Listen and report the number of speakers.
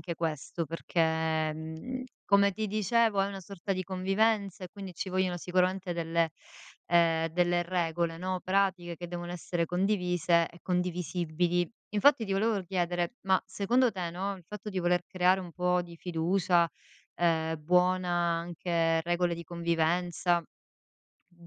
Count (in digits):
1